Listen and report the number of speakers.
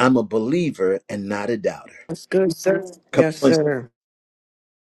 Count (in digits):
2